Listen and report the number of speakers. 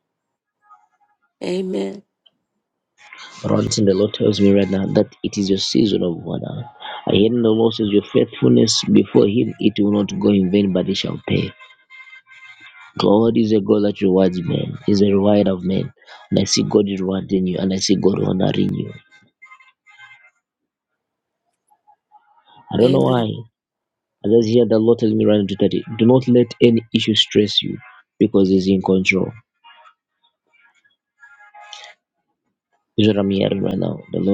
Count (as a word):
two